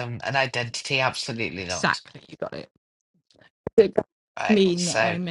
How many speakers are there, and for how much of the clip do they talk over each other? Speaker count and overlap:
2, about 19%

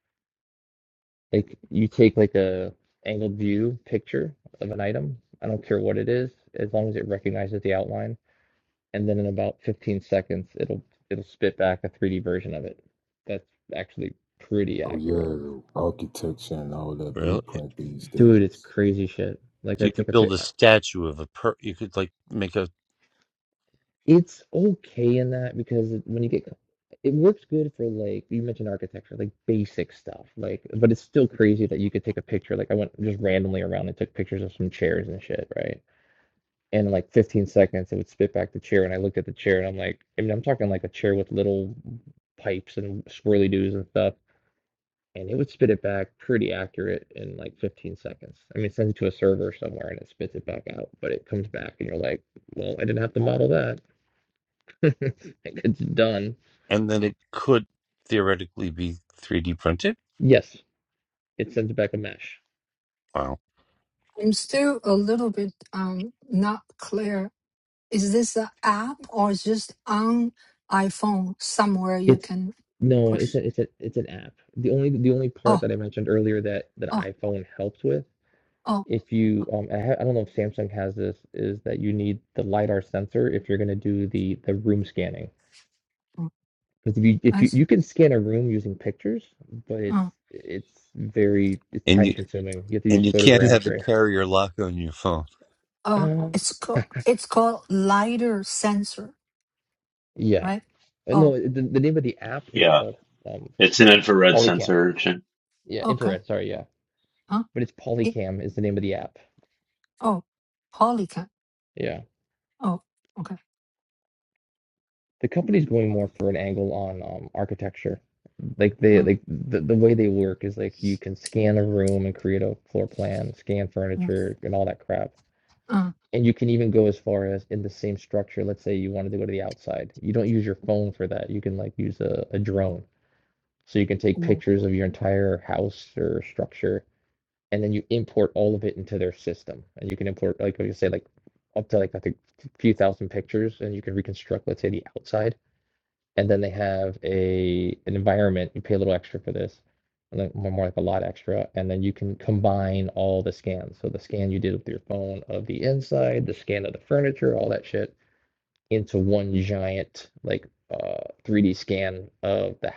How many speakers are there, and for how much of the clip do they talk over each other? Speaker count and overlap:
5, about 4%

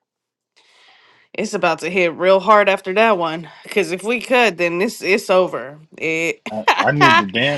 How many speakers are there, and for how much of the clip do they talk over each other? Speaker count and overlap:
2, no overlap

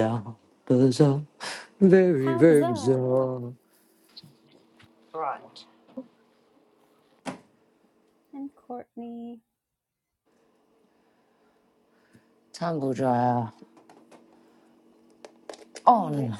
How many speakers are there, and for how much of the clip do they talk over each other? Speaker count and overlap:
2, about 8%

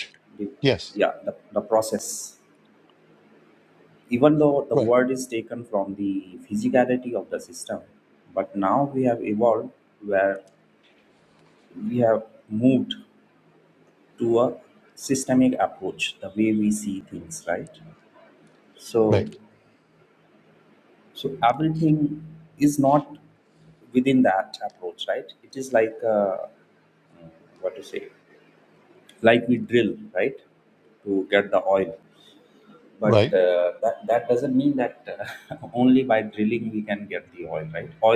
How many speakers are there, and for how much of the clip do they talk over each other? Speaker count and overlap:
2, about 1%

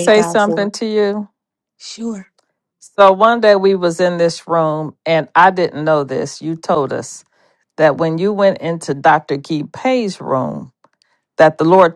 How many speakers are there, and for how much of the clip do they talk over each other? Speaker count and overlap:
2, about 6%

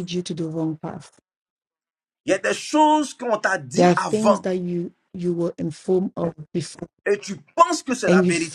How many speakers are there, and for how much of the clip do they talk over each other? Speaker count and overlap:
2, about 14%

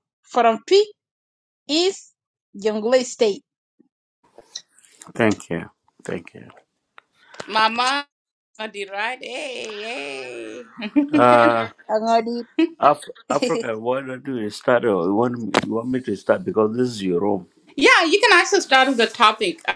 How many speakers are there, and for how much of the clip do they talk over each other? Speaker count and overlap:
3, no overlap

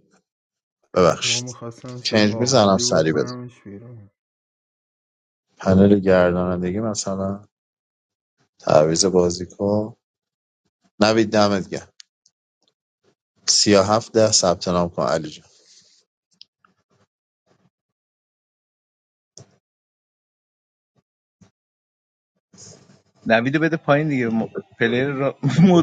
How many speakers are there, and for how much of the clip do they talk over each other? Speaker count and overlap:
3, about 6%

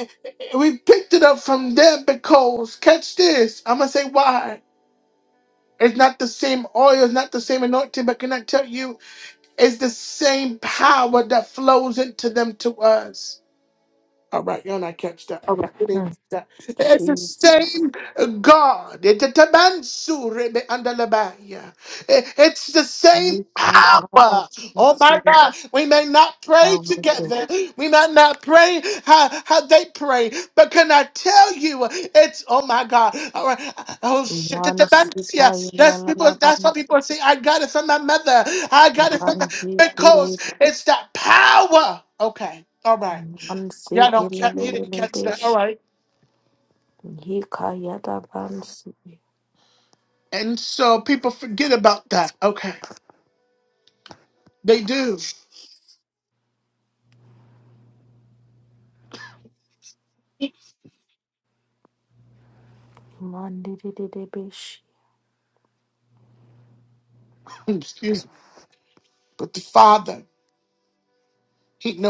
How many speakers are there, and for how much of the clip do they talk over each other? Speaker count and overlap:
2, about 12%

